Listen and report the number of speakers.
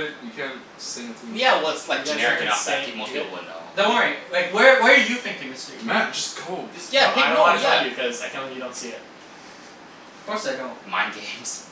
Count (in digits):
4